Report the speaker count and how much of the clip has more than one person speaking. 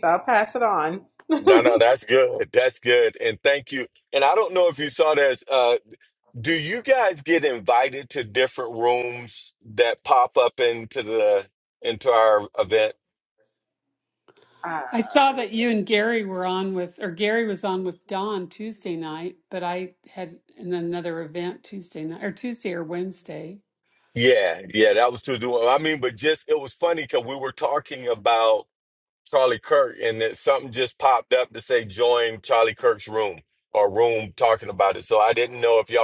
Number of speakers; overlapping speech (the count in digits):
3, no overlap